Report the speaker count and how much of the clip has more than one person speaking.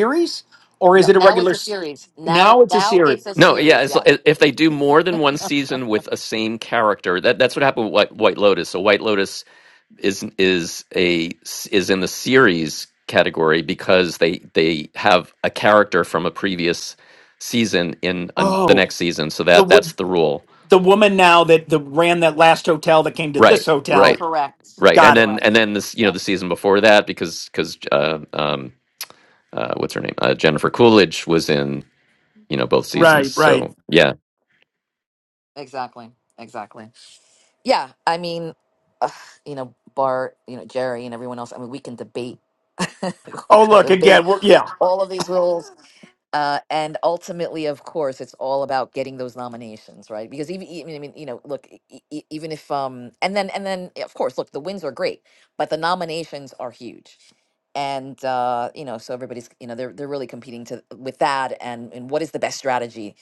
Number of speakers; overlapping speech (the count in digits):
3, about 9%